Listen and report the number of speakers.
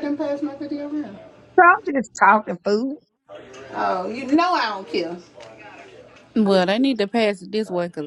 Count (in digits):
3